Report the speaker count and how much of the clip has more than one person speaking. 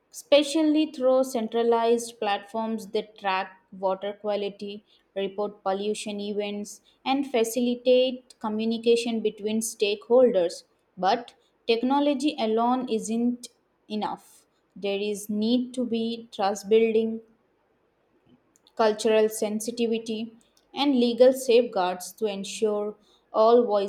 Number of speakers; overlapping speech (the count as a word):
one, no overlap